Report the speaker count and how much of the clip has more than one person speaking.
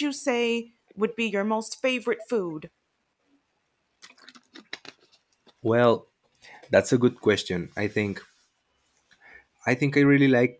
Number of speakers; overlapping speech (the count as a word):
two, no overlap